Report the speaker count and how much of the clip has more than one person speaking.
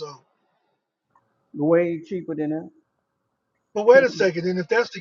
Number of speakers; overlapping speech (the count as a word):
two, no overlap